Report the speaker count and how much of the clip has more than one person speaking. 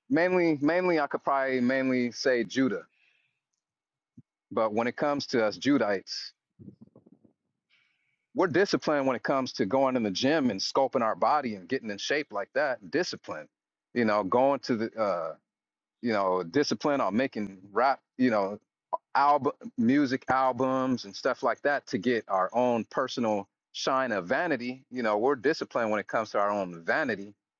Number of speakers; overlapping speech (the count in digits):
1, no overlap